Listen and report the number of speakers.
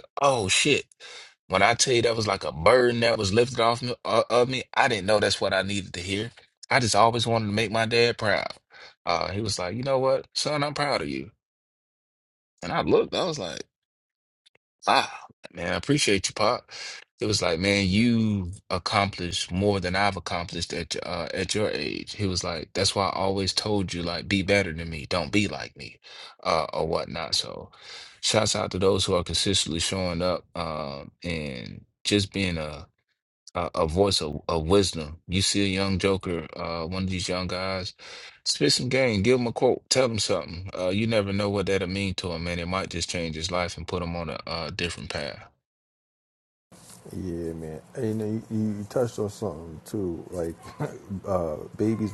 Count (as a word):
two